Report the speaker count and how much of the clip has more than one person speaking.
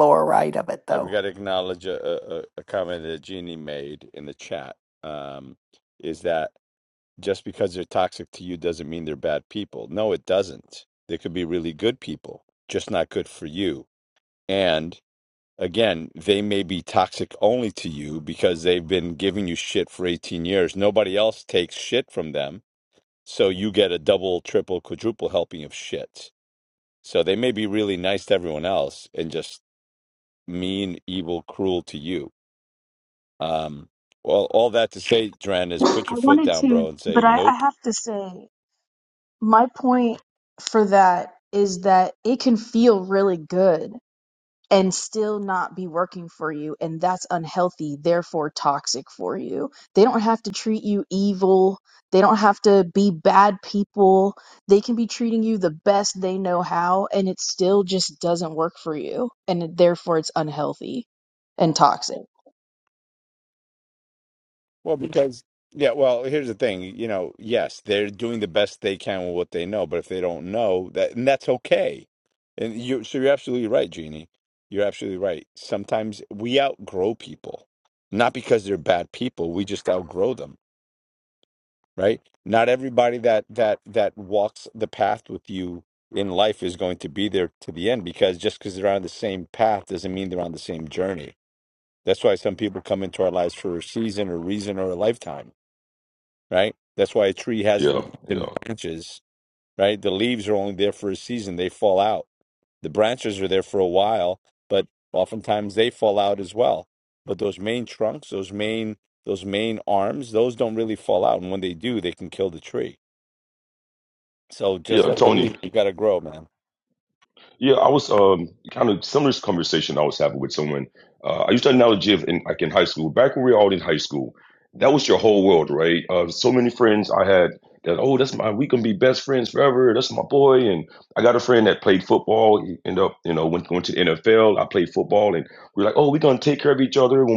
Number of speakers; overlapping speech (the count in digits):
4, about 2%